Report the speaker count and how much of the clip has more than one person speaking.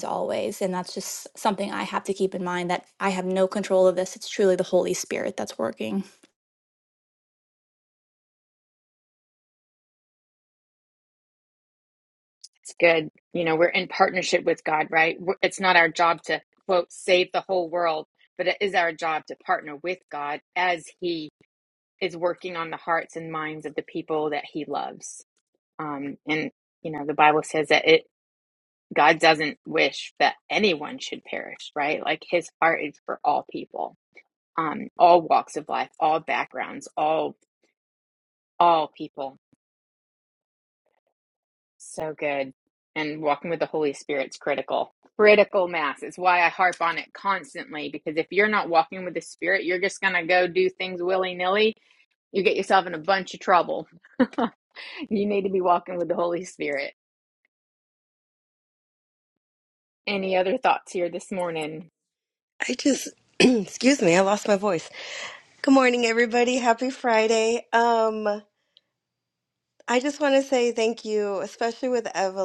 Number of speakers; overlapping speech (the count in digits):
3, no overlap